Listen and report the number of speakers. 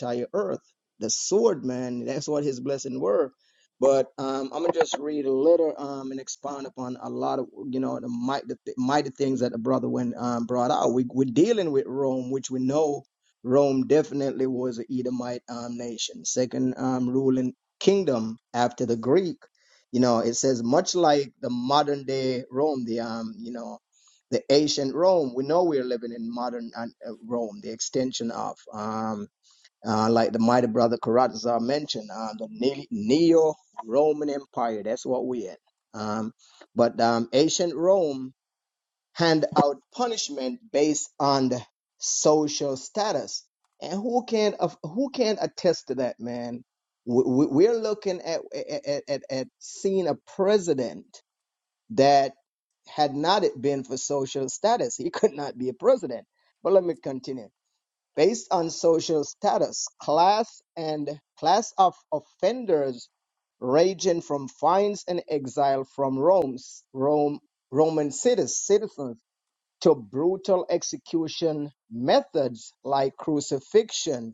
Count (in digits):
1